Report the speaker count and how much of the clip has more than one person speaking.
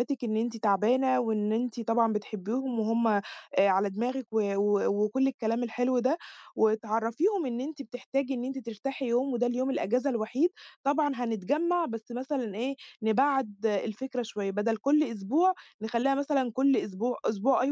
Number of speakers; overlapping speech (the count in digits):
1, no overlap